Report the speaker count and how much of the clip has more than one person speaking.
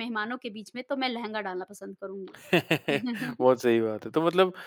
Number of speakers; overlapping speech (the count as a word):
two, no overlap